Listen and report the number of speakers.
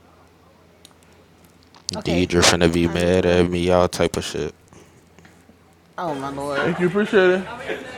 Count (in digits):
3